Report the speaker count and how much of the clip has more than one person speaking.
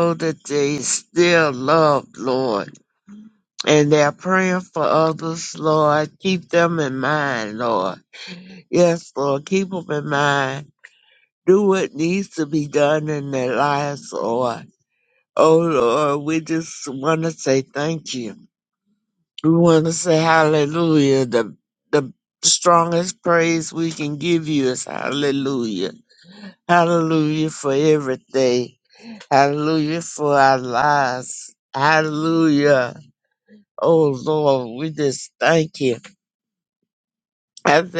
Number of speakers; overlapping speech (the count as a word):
one, no overlap